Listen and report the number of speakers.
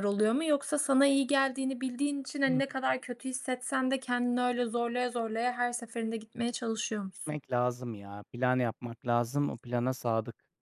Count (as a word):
two